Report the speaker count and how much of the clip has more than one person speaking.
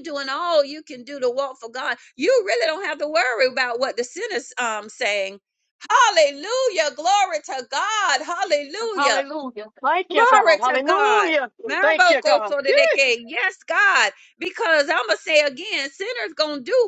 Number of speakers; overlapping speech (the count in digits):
1, no overlap